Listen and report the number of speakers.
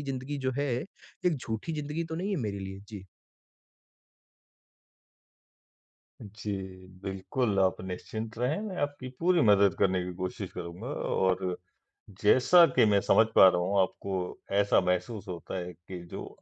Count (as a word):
two